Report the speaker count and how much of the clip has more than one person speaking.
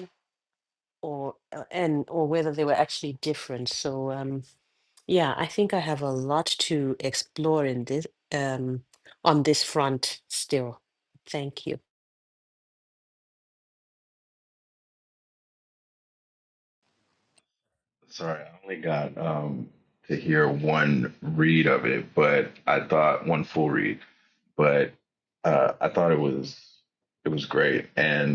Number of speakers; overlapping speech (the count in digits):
2, no overlap